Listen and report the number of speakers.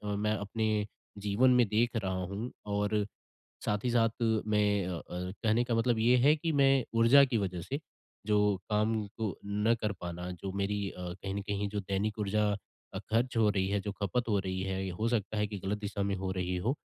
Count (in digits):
1